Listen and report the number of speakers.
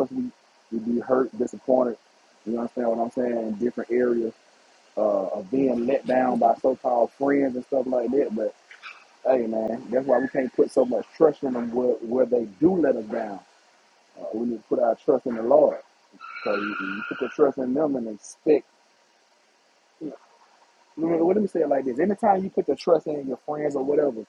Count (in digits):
1